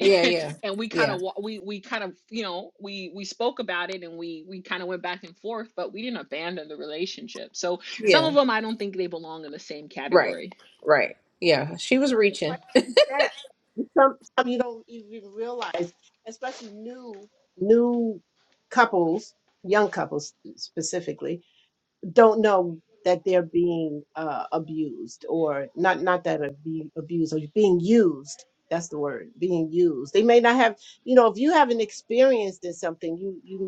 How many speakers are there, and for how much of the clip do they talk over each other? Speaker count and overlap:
three, about 4%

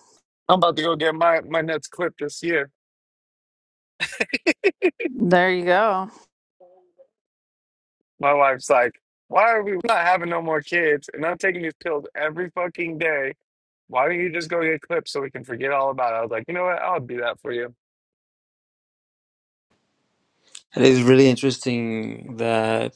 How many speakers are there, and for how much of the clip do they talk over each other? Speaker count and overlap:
three, no overlap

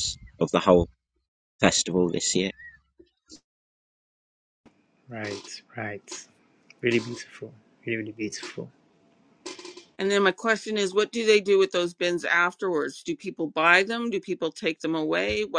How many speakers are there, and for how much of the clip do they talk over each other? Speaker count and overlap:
three, no overlap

